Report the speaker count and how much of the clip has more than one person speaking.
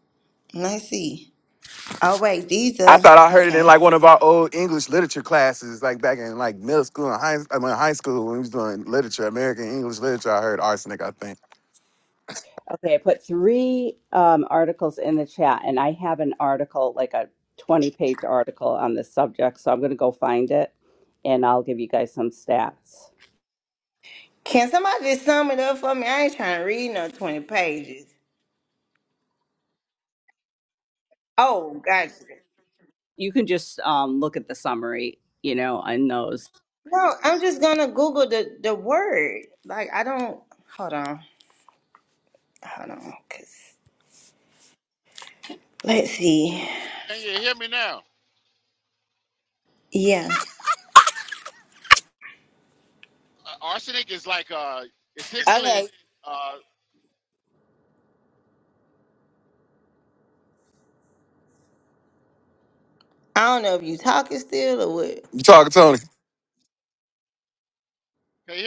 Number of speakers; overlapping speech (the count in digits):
4, about 2%